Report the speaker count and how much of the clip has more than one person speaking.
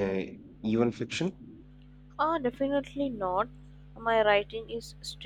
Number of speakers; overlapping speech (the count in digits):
2, no overlap